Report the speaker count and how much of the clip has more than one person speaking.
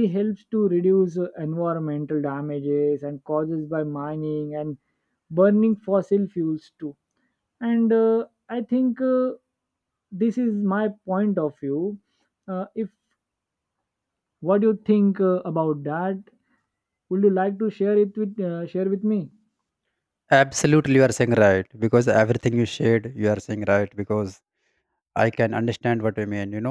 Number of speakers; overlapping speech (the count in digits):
2, no overlap